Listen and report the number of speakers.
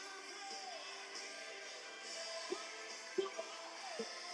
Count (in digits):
0